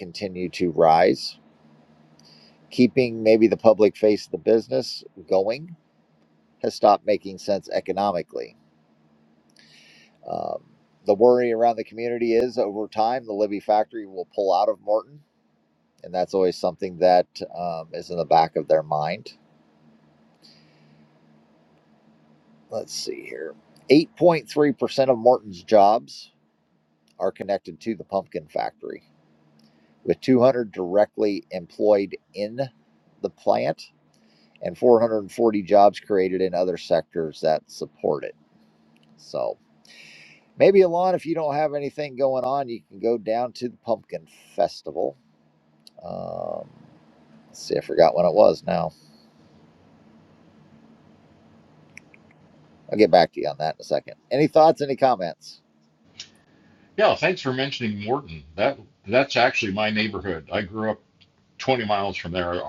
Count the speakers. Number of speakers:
2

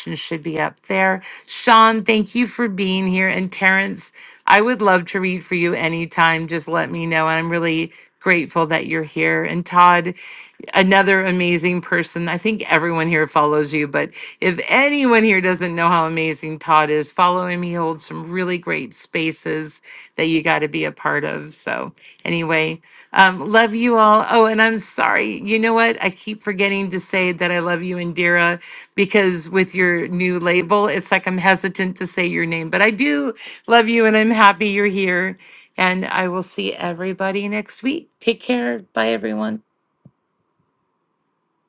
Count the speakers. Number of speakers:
1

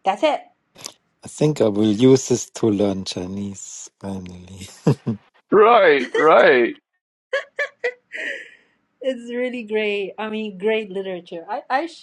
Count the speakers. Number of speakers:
3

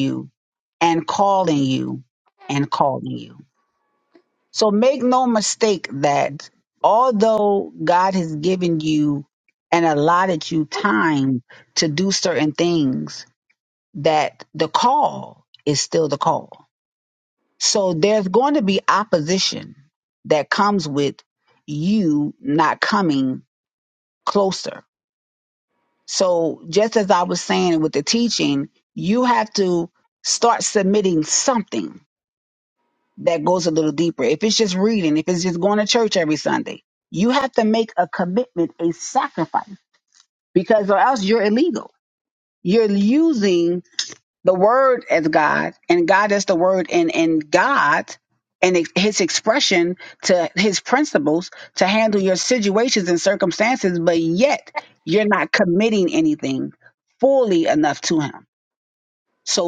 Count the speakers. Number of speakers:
1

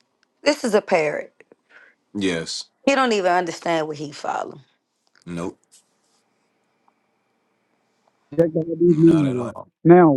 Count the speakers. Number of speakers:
3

